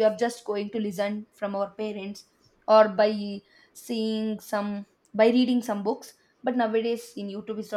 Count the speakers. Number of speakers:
1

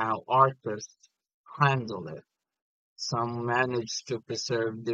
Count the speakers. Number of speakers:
1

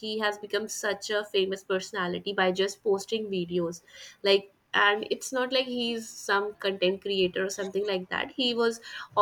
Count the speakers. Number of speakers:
1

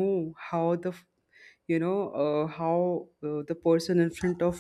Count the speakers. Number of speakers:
1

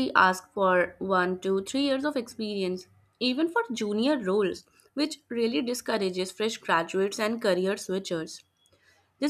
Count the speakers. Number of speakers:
1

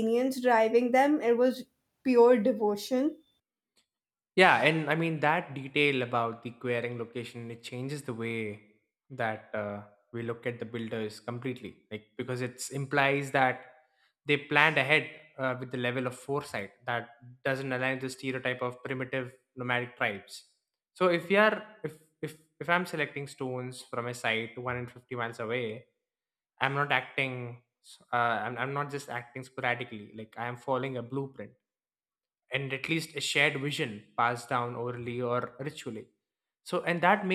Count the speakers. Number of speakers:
2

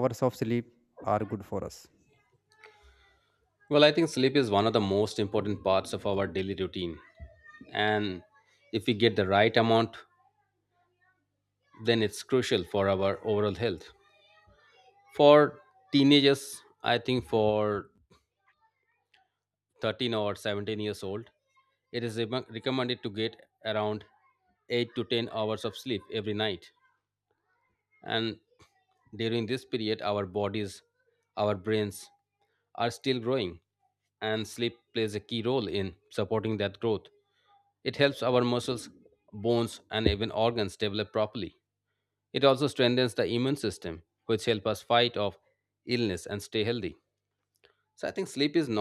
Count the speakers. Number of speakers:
2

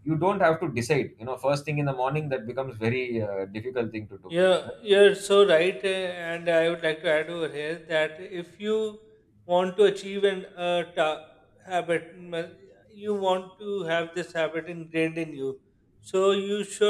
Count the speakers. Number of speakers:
2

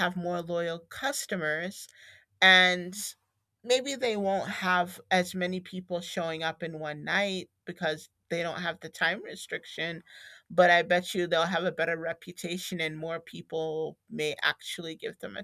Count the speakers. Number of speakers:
1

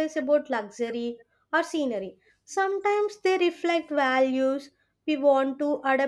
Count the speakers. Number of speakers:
1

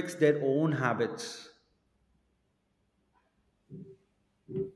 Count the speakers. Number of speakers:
1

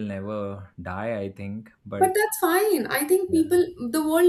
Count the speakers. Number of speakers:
2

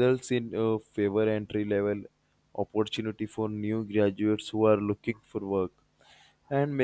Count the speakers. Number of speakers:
1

